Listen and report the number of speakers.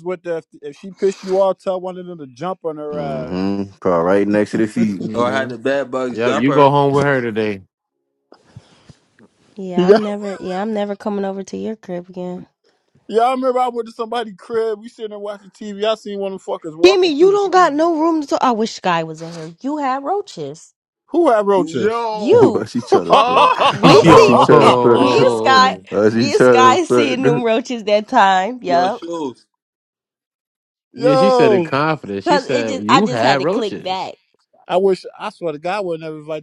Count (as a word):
five